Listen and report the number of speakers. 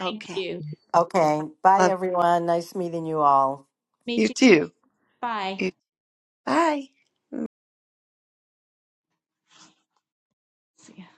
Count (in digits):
3